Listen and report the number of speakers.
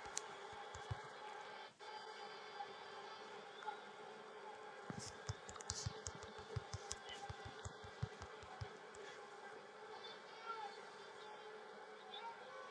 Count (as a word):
zero